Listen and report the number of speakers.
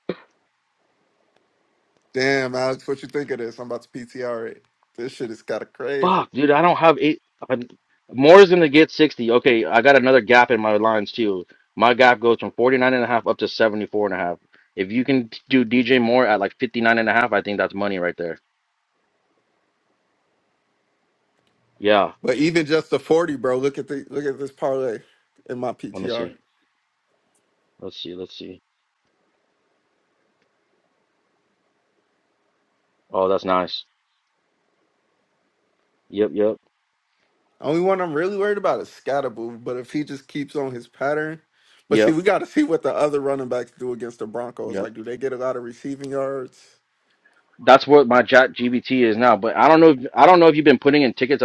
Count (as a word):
two